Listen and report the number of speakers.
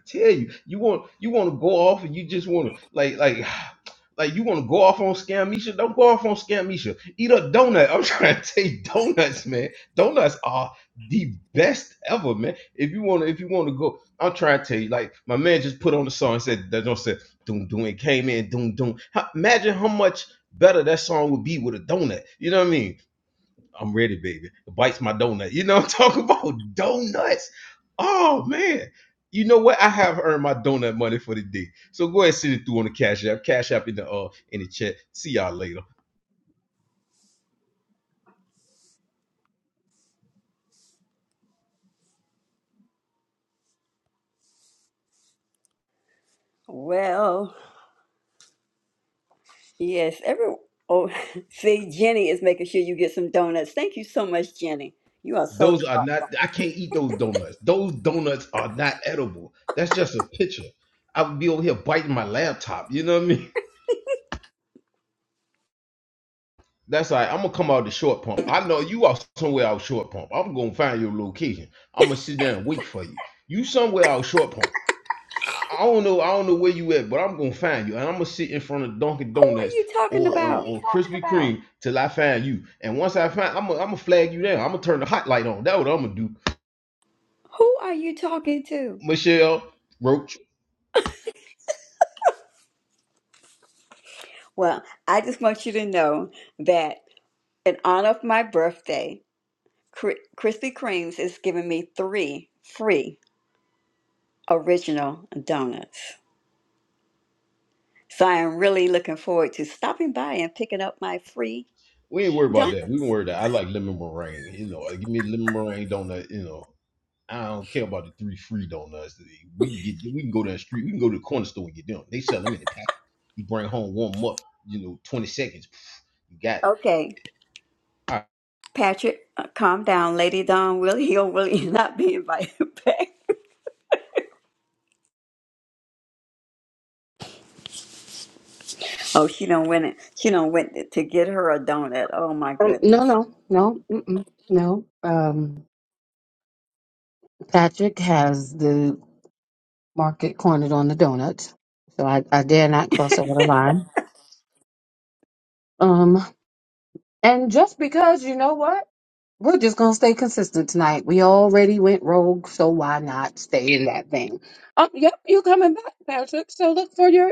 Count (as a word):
three